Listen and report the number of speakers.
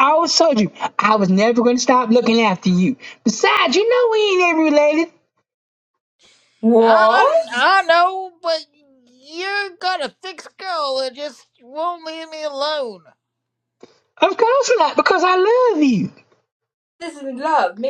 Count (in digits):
3